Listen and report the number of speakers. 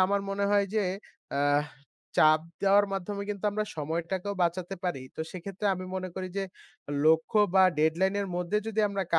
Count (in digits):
1